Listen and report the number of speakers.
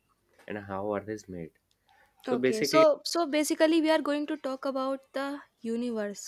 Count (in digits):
2